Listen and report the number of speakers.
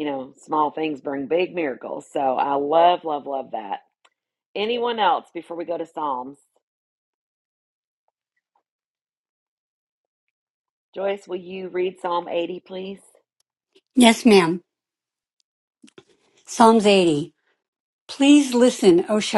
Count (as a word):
two